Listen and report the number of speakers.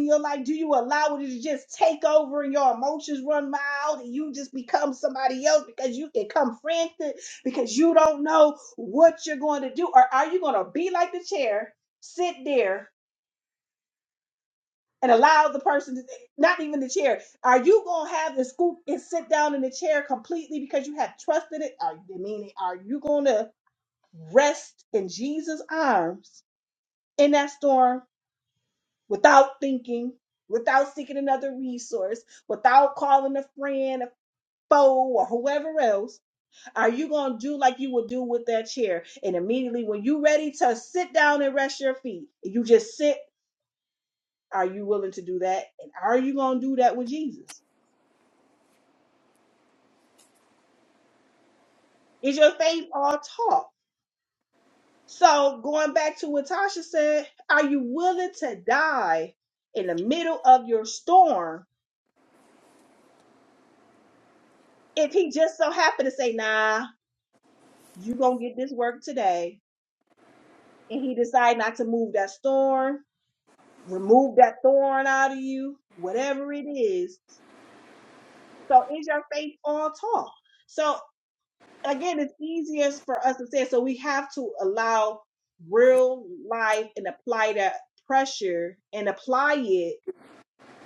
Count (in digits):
1